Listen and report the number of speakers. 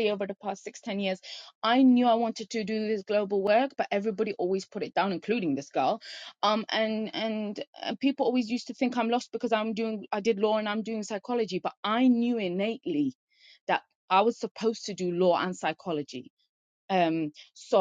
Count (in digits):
1